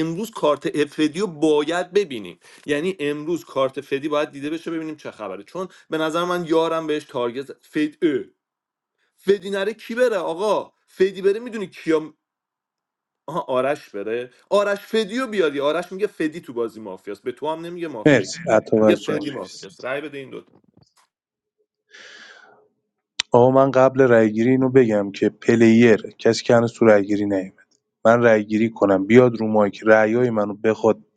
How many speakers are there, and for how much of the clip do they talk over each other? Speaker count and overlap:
two, about 3%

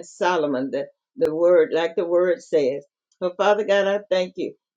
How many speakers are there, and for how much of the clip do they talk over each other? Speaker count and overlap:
one, no overlap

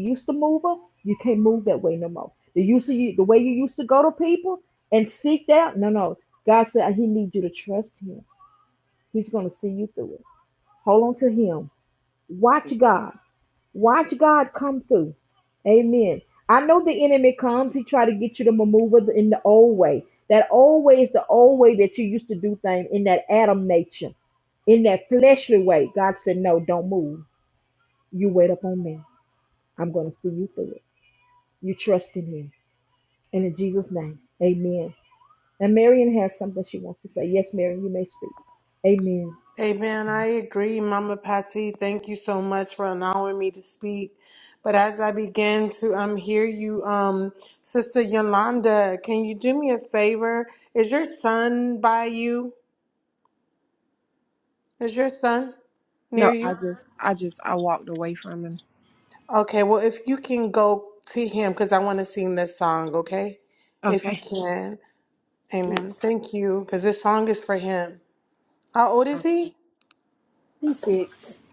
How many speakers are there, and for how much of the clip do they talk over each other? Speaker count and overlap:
three, about 2%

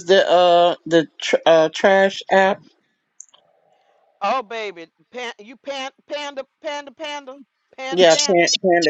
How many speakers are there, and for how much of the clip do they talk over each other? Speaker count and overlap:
two, about 7%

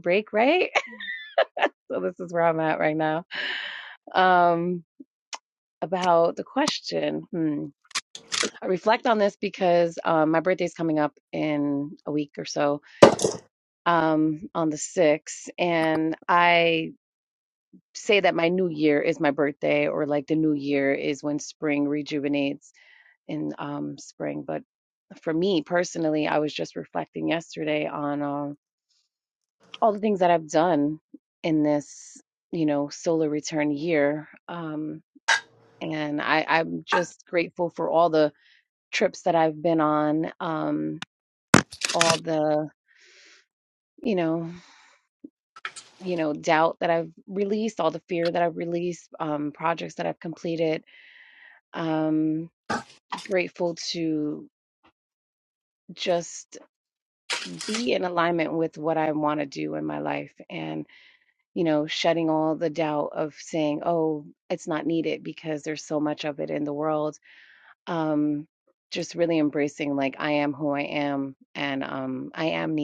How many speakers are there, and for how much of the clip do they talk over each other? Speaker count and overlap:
one, no overlap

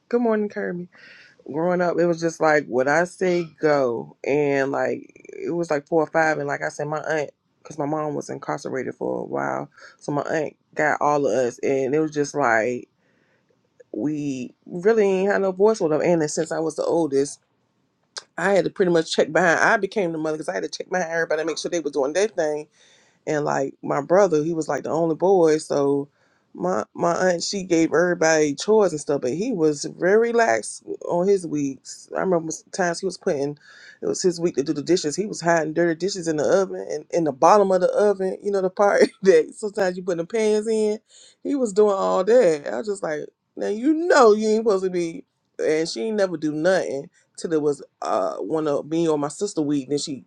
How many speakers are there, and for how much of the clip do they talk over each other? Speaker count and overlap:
one, no overlap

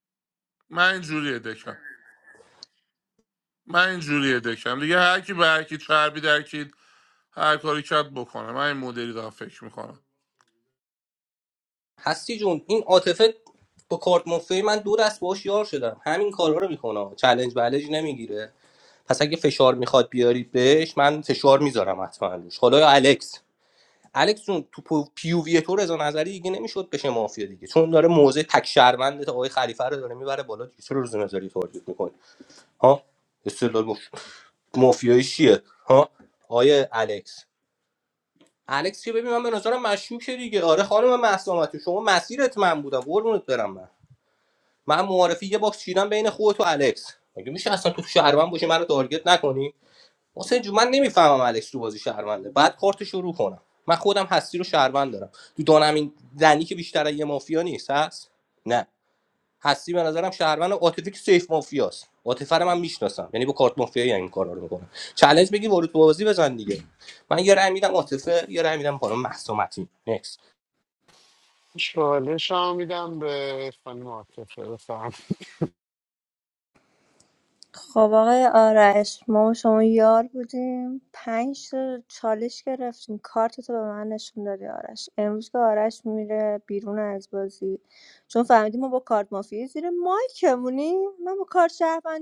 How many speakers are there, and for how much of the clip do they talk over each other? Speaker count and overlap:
four, no overlap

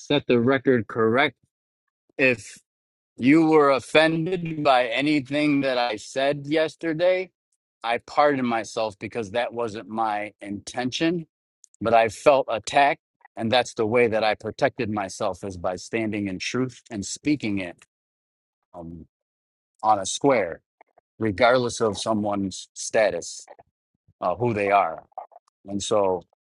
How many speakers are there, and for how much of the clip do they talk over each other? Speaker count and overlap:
one, no overlap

